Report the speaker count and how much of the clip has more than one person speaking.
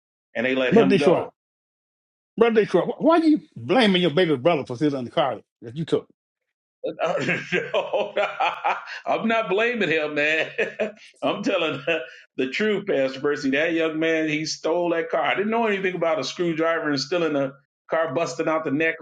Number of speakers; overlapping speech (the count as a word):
two, about 3%